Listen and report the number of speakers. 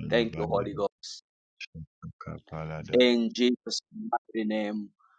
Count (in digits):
2